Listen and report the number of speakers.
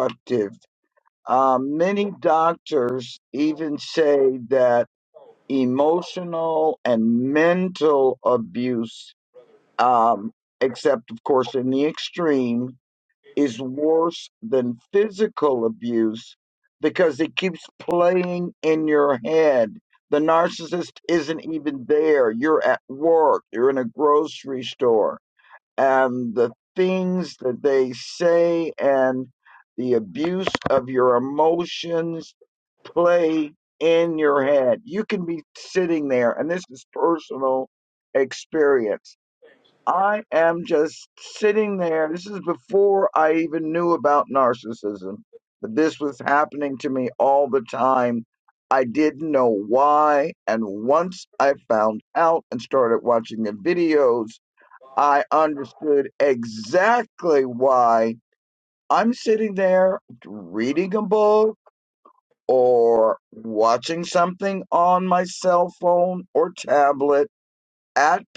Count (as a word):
one